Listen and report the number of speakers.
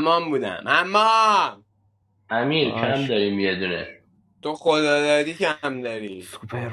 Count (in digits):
3